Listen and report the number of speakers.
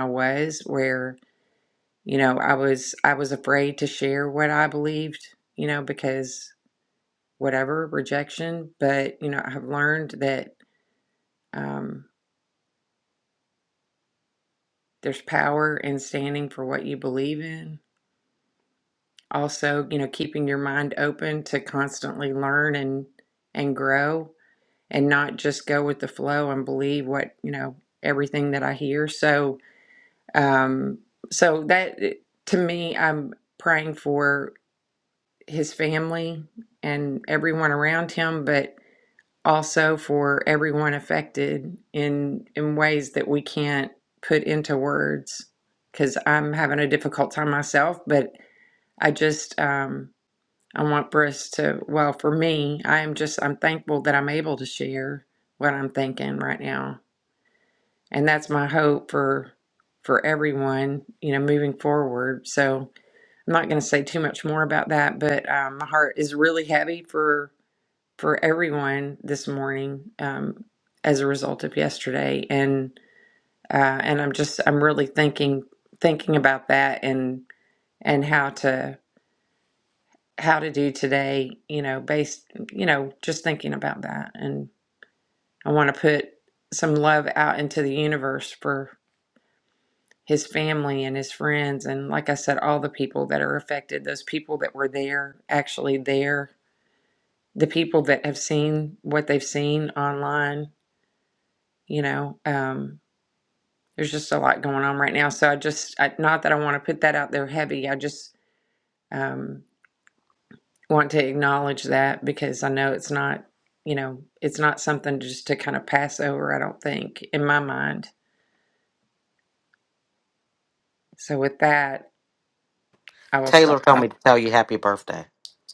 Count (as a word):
two